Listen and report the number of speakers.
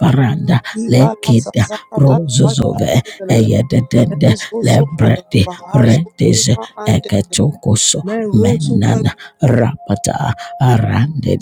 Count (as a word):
two